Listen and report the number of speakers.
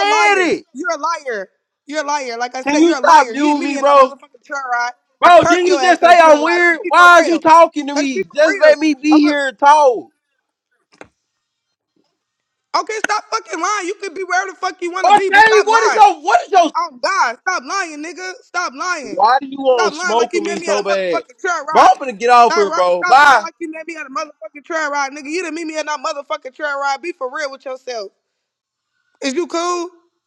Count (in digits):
2